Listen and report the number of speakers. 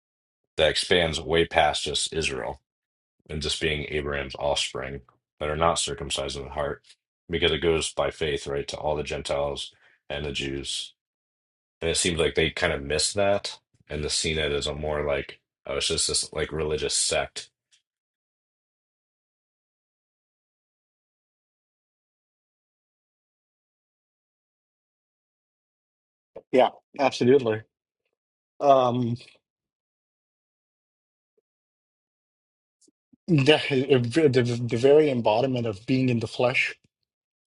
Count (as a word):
two